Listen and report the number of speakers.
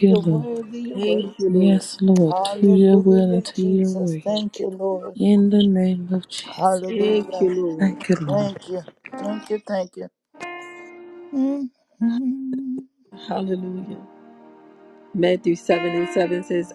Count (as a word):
three